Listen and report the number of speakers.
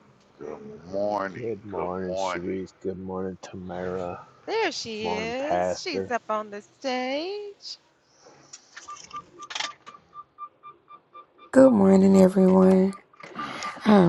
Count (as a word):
four